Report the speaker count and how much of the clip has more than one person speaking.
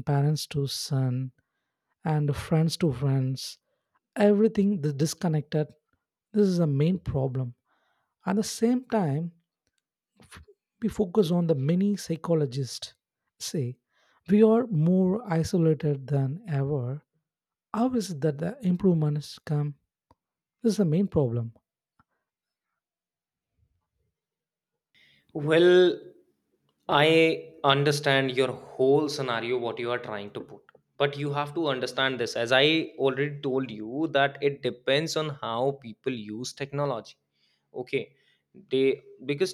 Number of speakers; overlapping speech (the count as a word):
two, no overlap